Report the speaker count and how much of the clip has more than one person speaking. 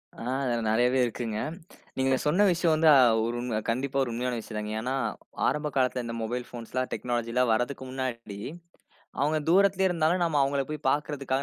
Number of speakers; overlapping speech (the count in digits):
1, no overlap